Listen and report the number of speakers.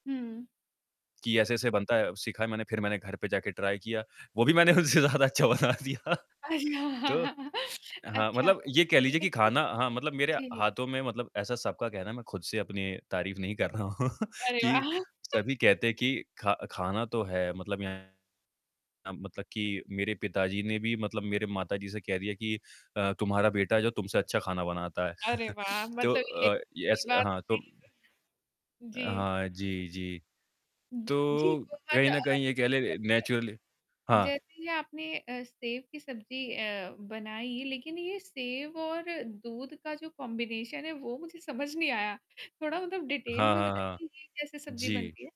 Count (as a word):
two